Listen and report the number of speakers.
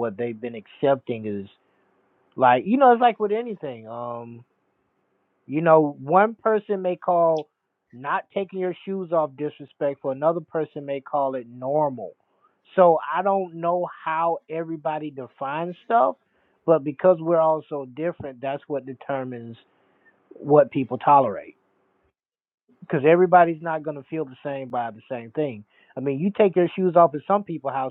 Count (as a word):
one